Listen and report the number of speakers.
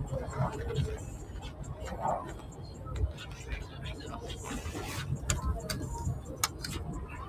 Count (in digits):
0